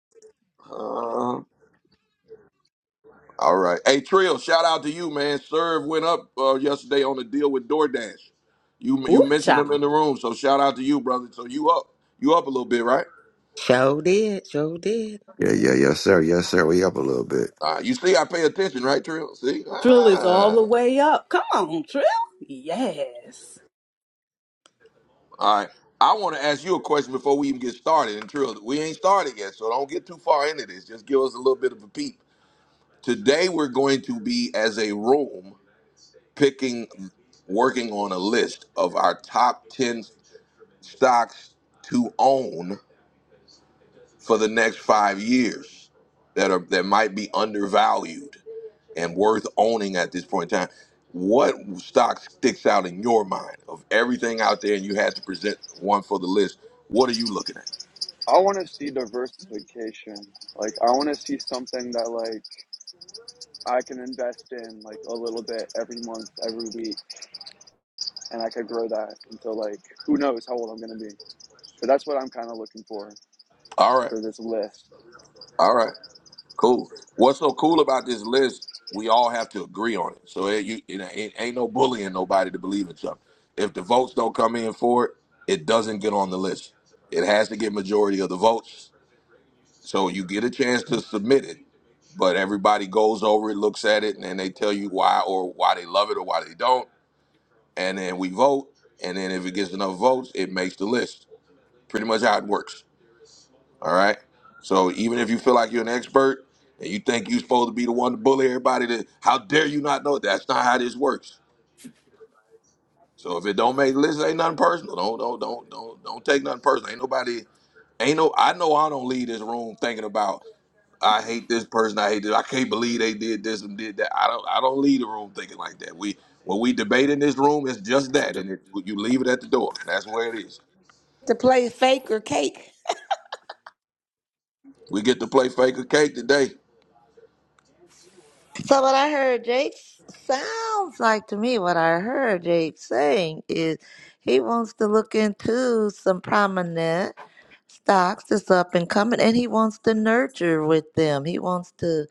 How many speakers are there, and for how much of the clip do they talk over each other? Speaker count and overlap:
6, about 1%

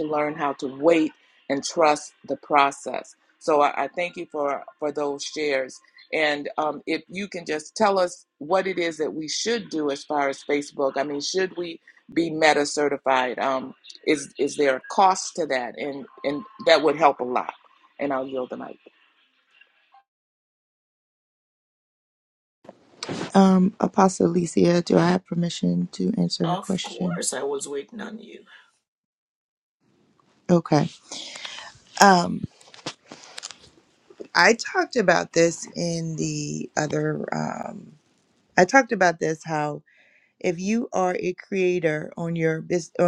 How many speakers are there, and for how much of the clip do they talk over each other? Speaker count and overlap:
3, about 2%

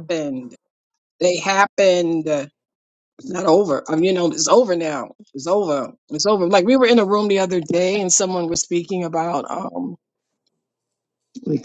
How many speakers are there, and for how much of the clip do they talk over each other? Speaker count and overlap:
1, no overlap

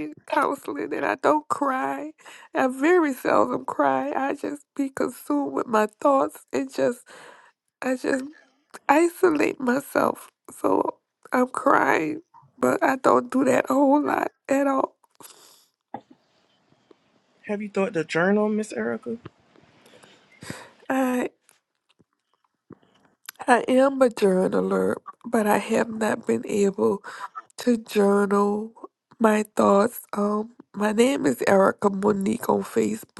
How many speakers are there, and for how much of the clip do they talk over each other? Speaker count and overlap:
2, no overlap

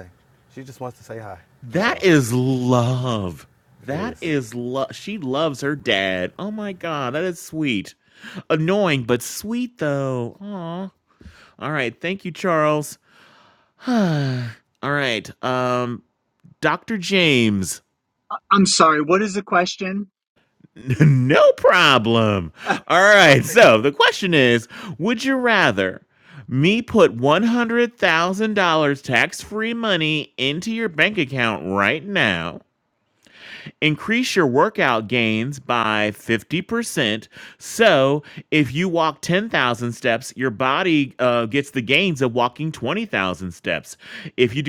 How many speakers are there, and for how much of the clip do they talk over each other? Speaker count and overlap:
3, about 2%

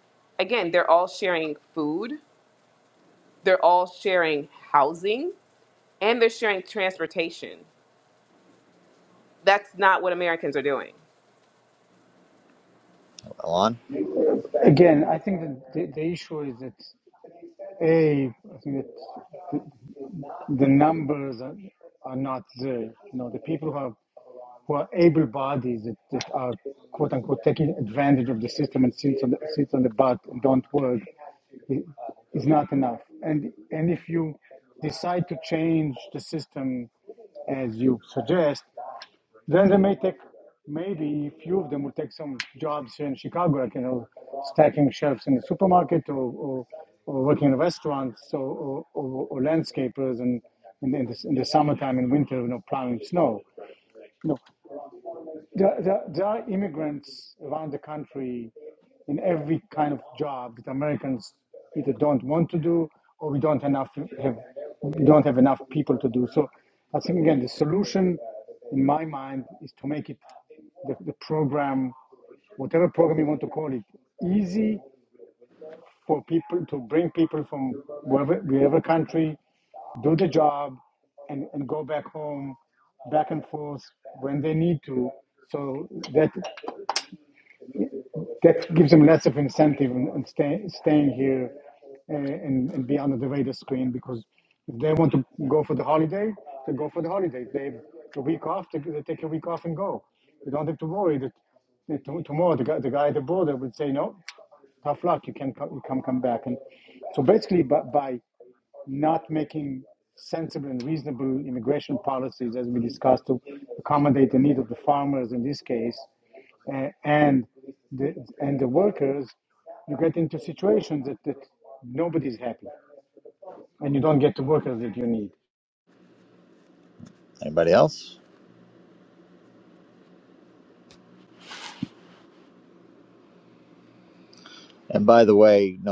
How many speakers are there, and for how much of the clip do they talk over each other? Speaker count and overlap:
3, no overlap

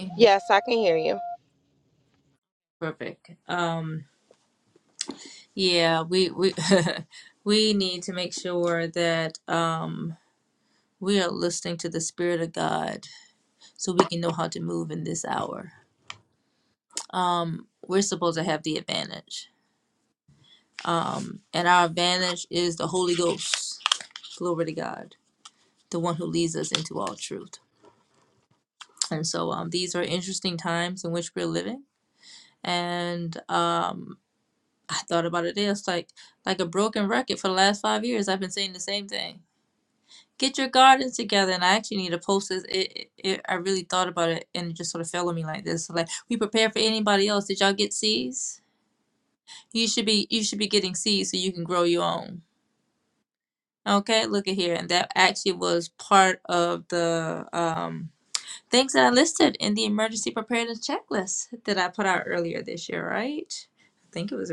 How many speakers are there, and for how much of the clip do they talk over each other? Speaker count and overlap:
2, no overlap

